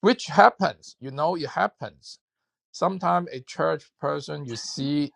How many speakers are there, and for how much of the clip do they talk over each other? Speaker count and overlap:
1, no overlap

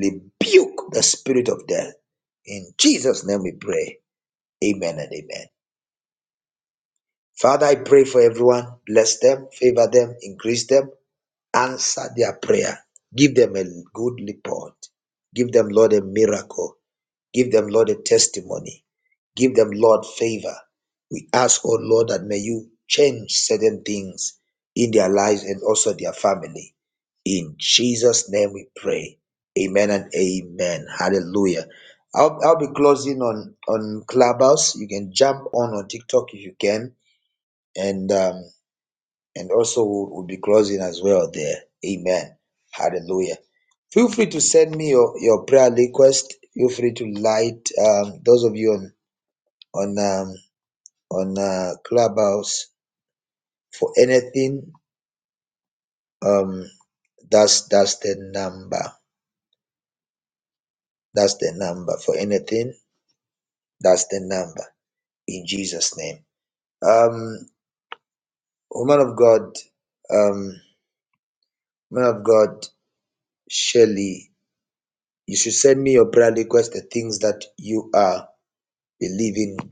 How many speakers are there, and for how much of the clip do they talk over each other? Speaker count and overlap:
1, no overlap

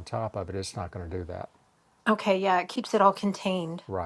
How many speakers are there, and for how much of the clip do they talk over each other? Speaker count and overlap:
2, no overlap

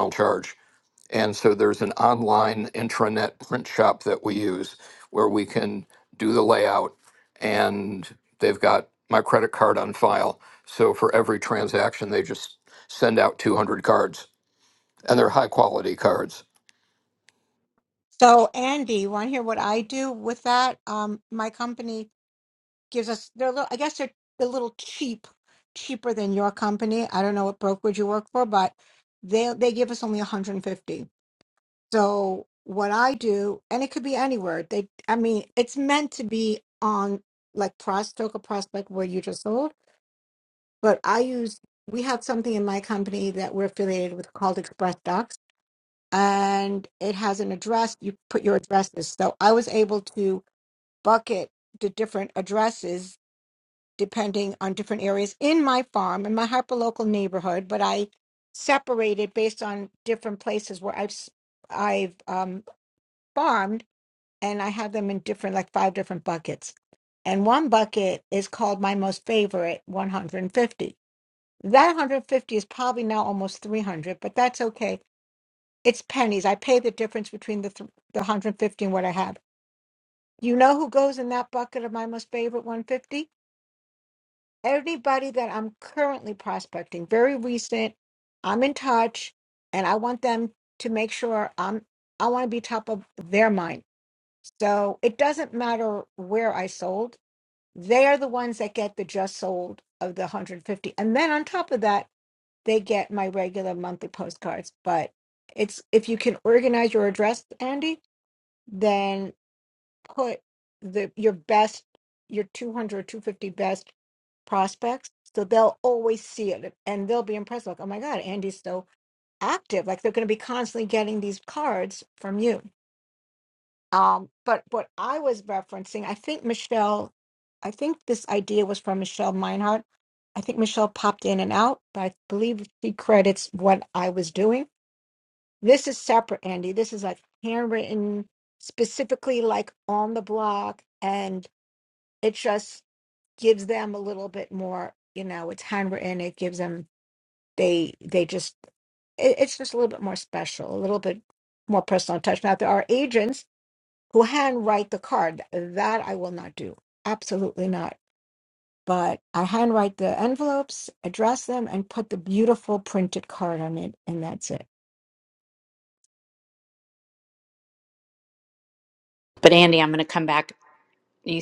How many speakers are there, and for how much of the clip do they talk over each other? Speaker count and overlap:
3, no overlap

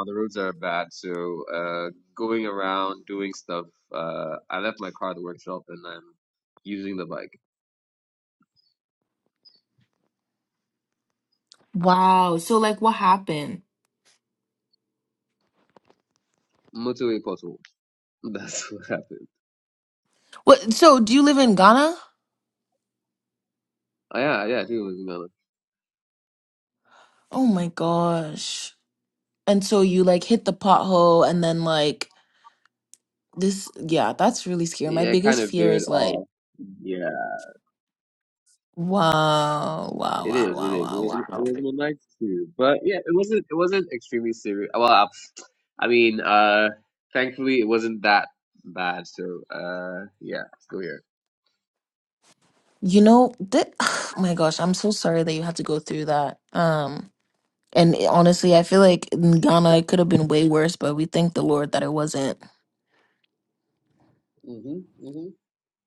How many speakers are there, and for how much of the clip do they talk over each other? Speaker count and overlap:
2, about 4%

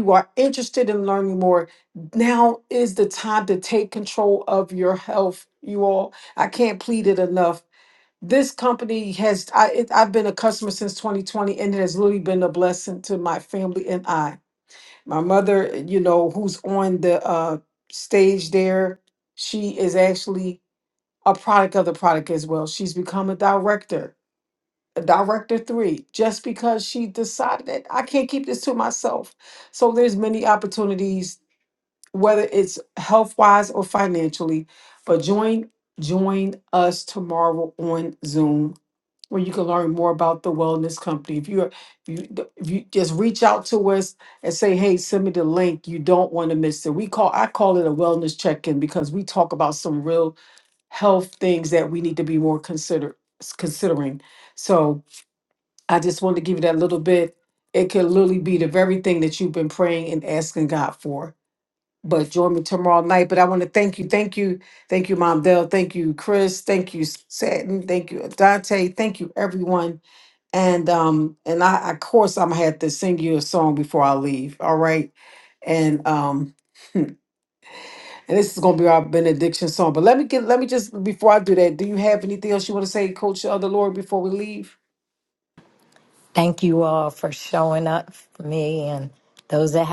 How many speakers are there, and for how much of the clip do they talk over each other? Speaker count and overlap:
2, no overlap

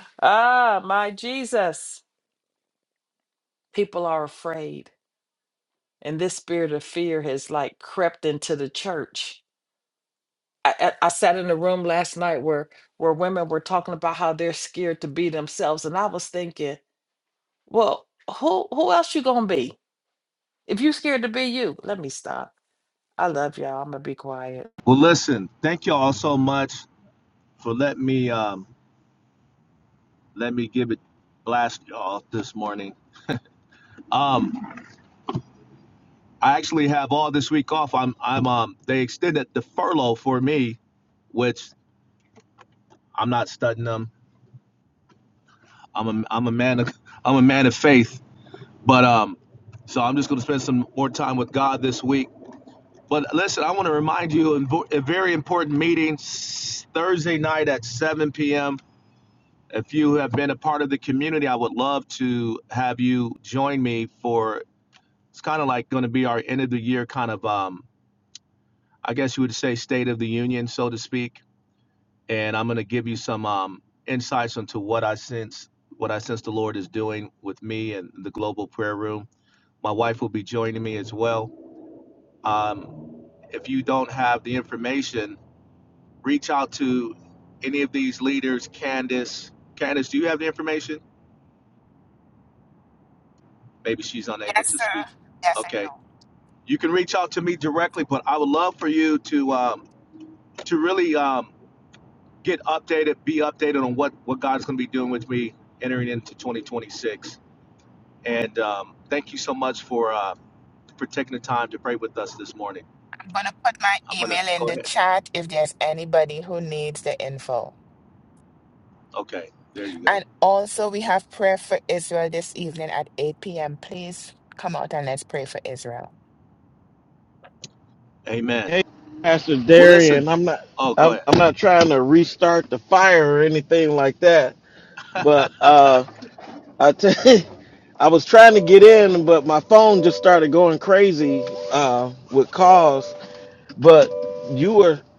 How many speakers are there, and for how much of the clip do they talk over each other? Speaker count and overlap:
4, about 2%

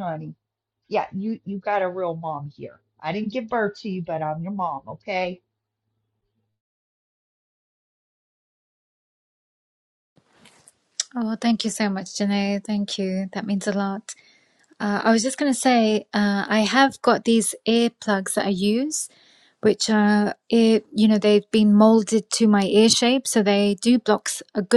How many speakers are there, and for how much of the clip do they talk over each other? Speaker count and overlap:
2, no overlap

